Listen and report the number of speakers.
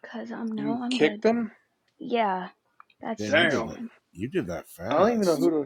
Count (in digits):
3